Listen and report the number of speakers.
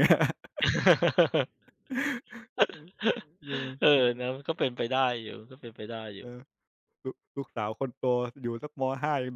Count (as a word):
two